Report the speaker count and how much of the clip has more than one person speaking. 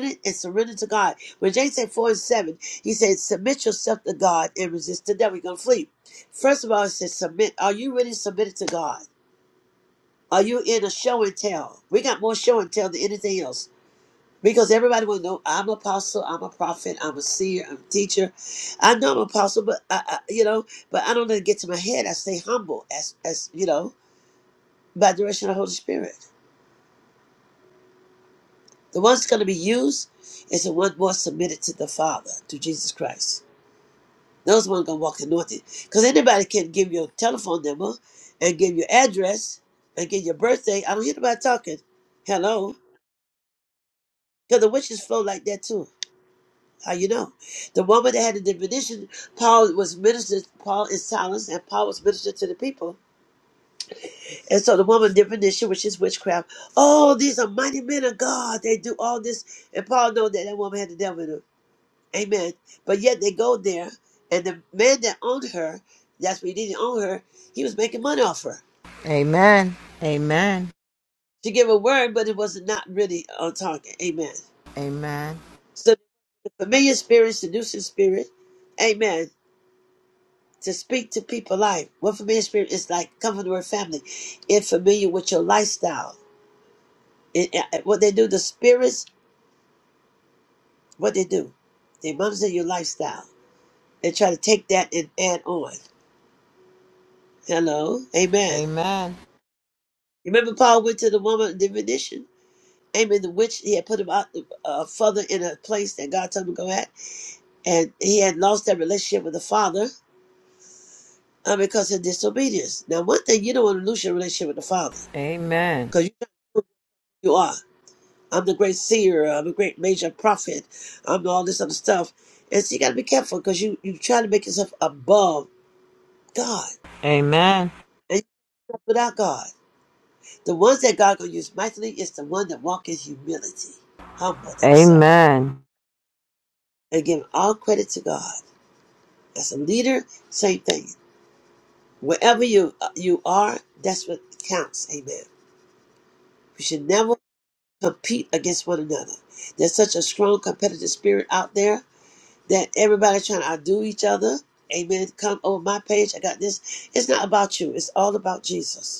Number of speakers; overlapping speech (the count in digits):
2, under 1%